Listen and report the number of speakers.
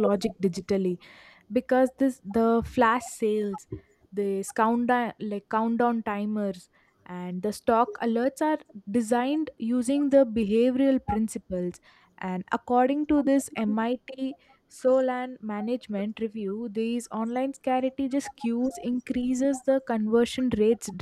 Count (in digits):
1